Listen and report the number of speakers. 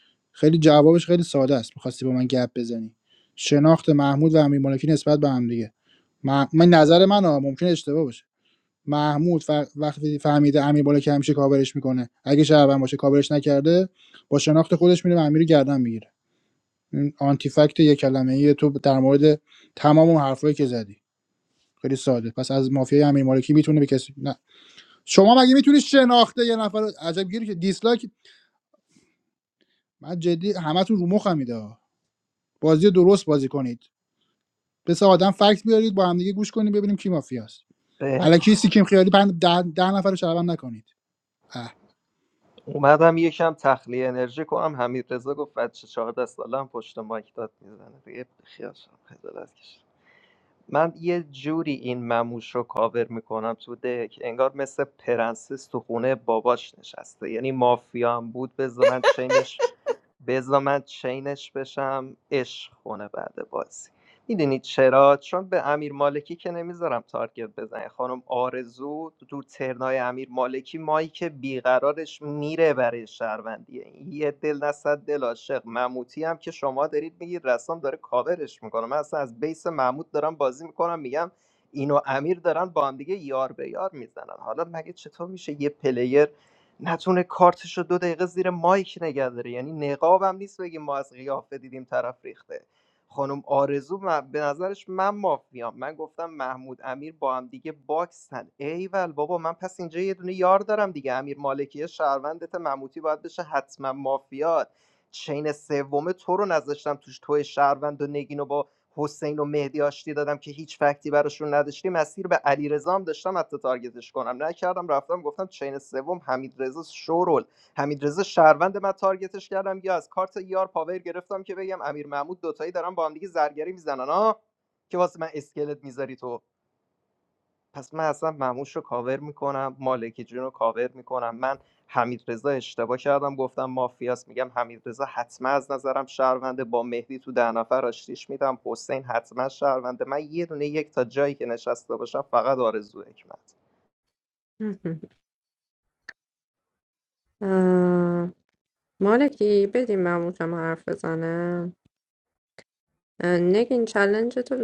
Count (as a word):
three